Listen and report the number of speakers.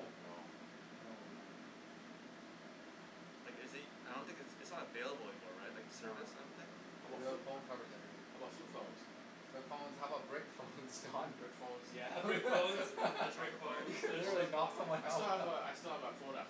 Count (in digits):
4